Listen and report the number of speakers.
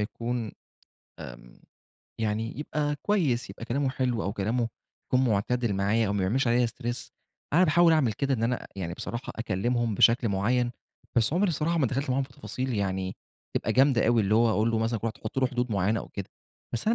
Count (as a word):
one